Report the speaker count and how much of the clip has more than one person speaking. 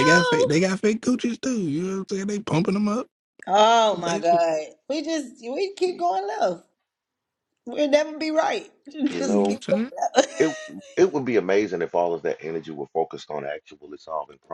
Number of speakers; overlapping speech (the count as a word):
three, about 12%